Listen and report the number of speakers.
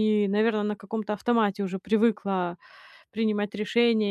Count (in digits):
1